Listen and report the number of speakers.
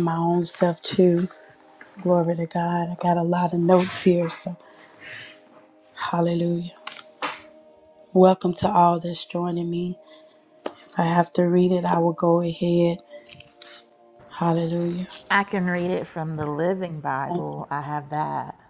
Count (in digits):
2